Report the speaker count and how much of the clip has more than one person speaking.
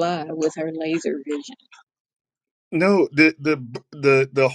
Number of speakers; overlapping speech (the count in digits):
2, no overlap